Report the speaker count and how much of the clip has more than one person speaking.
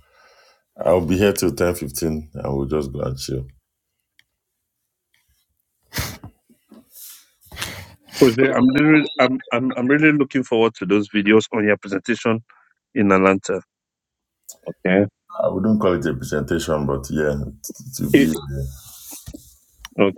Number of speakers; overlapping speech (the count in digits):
2, about 1%